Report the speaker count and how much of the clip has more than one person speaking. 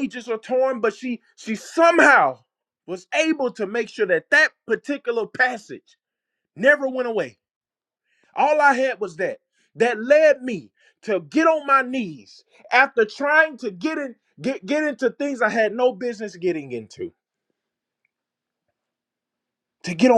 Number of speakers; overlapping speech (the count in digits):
1, no overlap